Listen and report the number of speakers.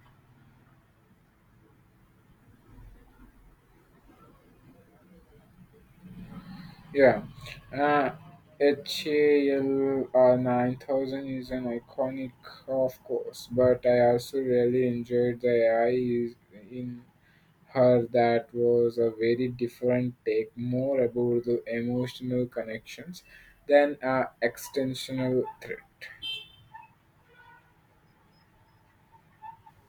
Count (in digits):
1